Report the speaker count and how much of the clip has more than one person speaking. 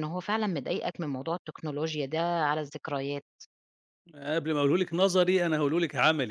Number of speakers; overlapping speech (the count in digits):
2, no overlap